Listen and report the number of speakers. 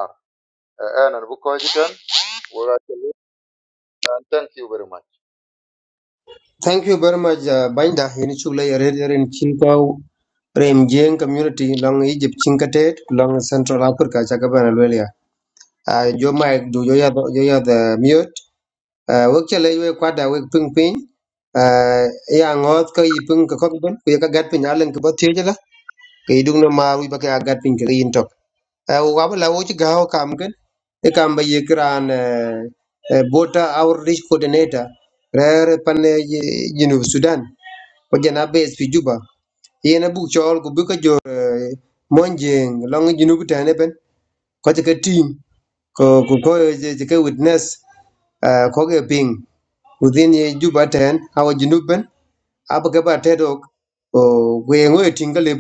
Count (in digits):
2